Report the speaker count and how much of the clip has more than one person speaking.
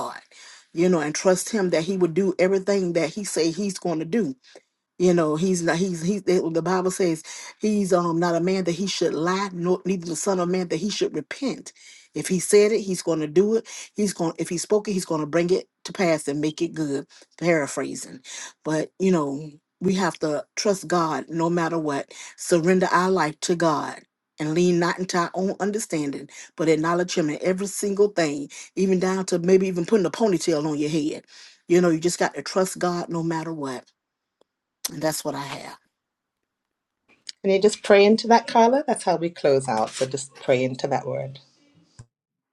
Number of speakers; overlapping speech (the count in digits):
2, no overlap